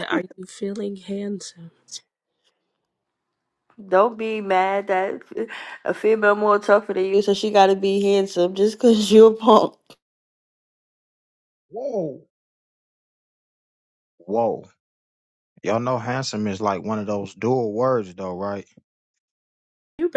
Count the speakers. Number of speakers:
3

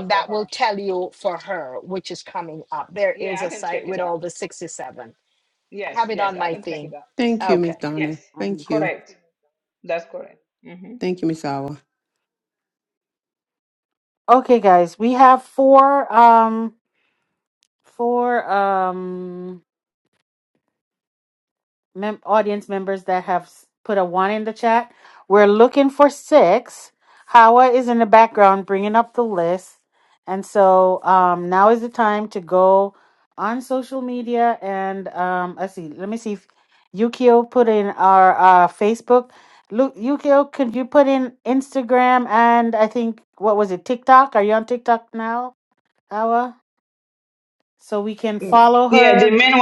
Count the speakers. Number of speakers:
4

